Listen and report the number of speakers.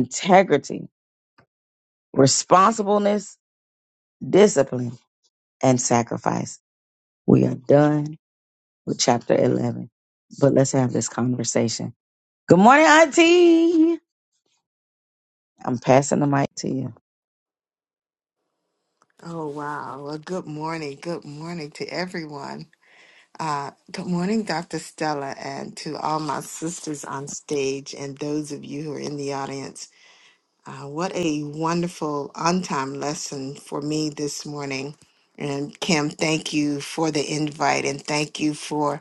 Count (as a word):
two